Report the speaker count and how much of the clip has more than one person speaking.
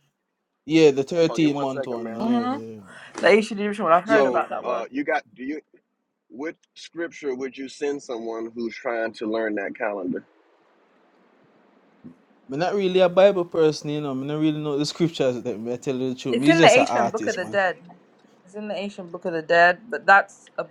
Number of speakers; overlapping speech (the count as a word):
three, about 16%